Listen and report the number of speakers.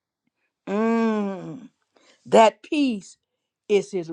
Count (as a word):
one